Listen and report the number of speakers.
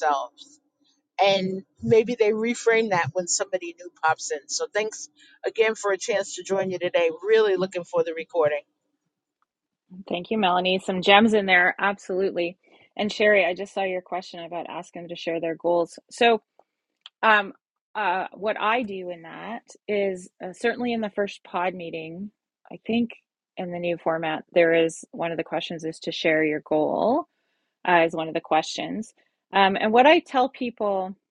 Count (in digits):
2